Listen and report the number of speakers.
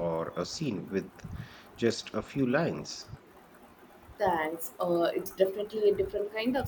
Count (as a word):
two